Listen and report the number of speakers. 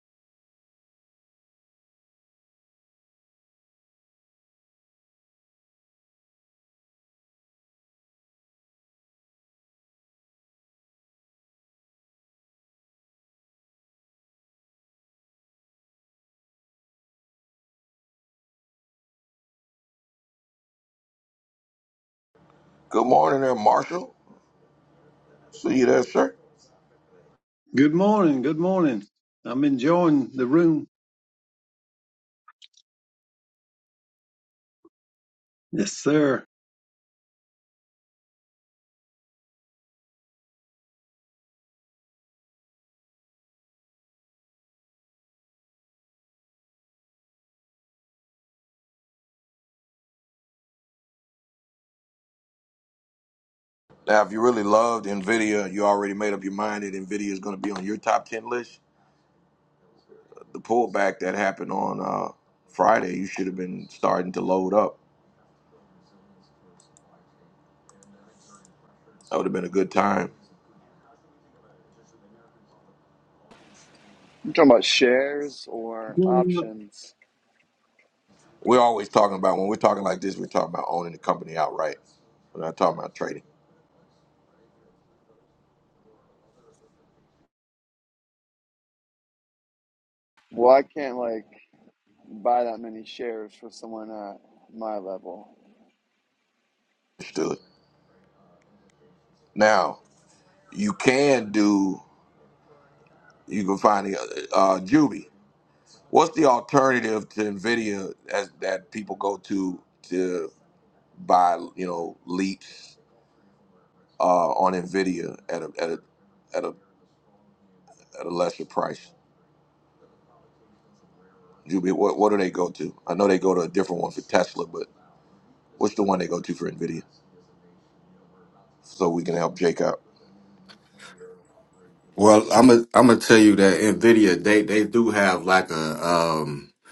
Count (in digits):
4